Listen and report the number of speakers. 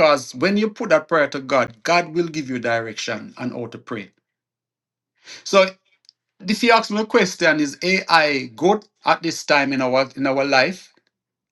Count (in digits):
1